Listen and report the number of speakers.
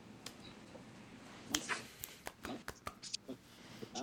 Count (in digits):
0